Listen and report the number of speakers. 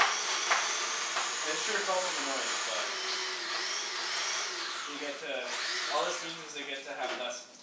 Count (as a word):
one